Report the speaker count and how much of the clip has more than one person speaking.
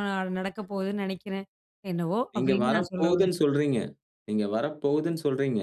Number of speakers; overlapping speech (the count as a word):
two, about 17%